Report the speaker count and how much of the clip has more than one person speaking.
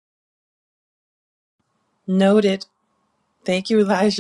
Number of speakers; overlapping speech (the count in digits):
1, no overlap